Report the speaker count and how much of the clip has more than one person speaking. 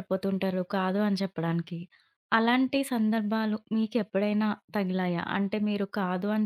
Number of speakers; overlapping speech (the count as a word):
one, no overlap